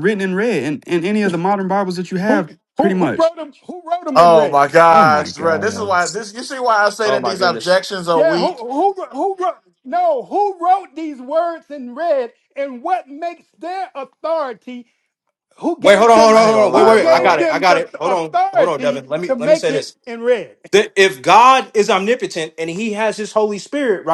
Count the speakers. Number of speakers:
four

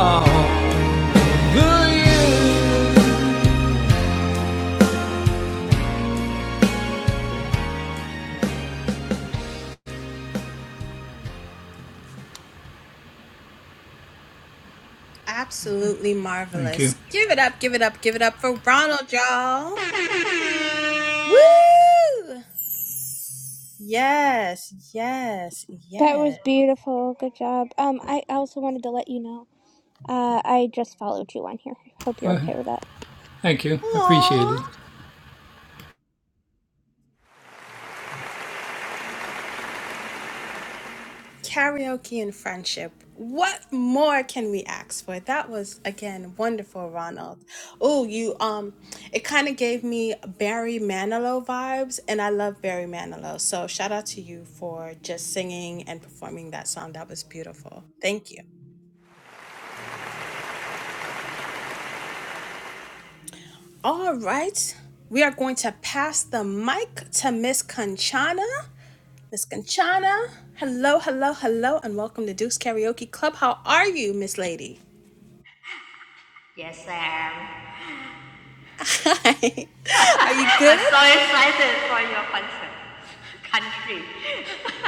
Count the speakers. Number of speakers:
four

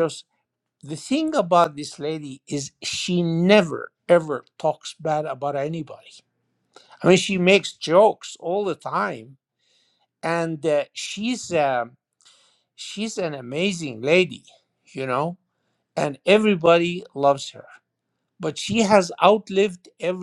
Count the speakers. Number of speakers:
one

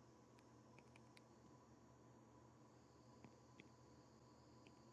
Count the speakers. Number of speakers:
zero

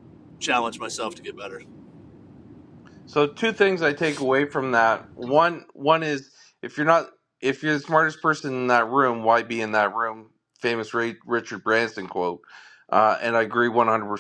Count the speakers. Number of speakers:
two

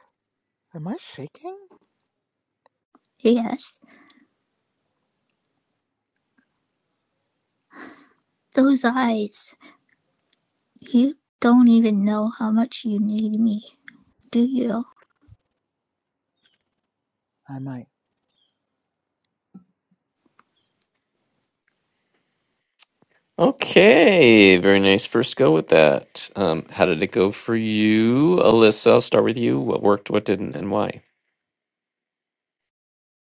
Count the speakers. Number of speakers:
three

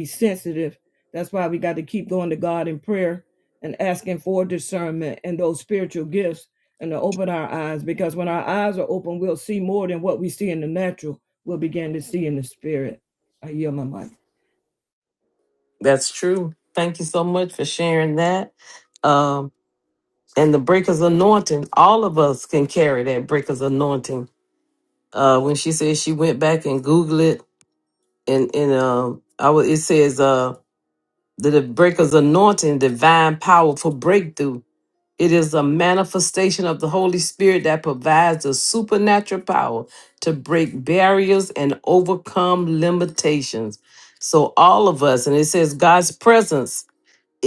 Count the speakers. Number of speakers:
two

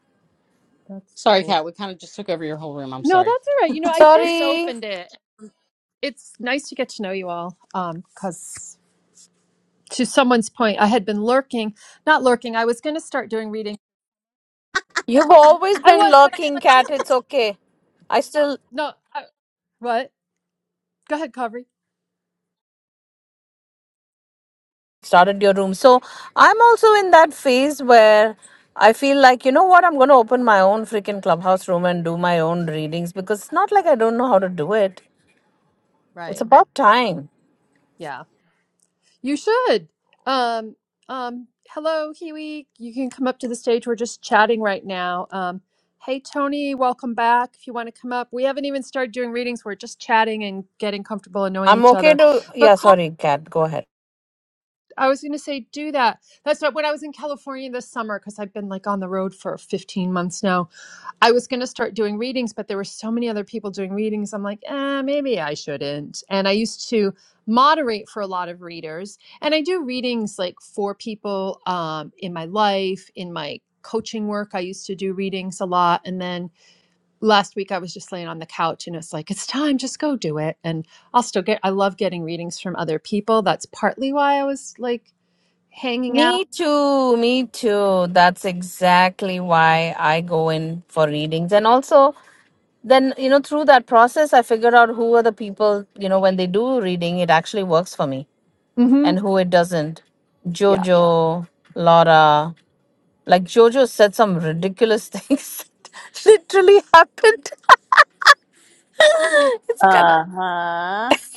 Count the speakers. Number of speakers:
four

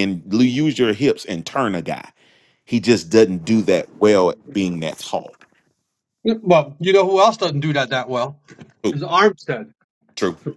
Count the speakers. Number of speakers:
two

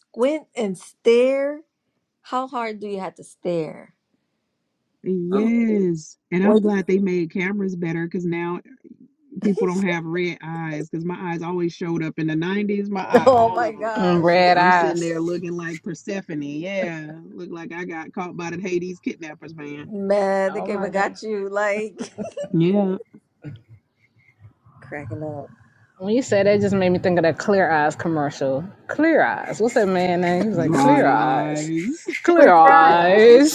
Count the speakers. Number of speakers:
three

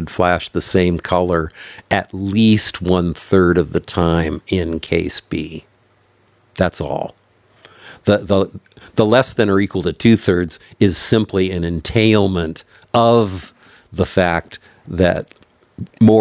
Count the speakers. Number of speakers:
one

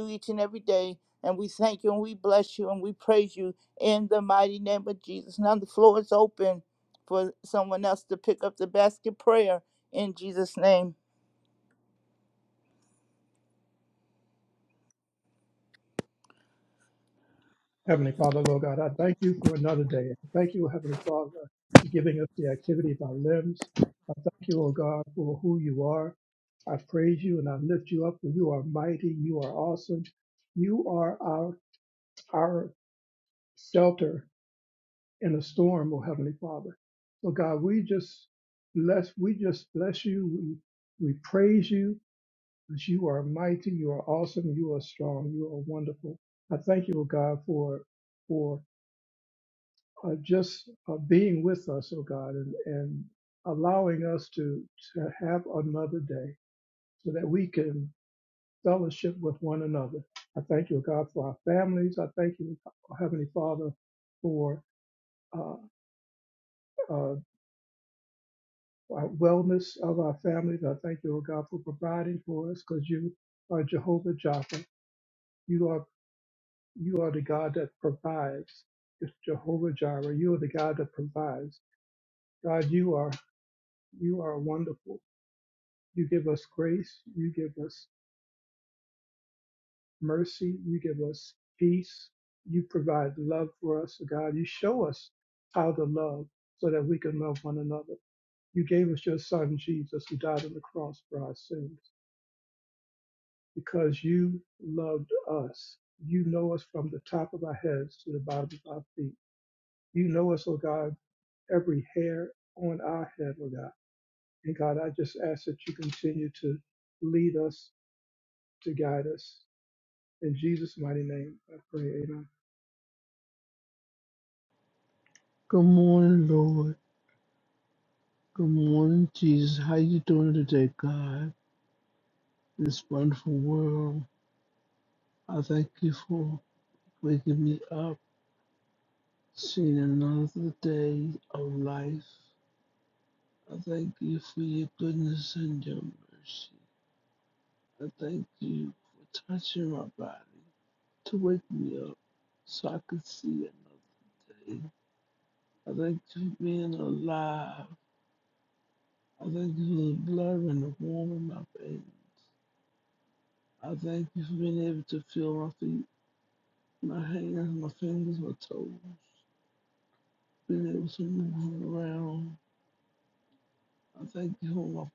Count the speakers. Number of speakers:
three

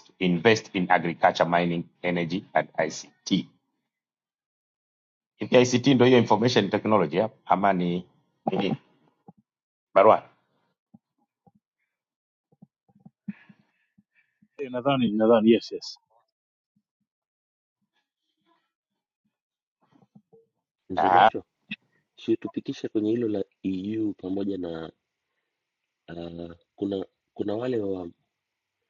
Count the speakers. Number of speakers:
three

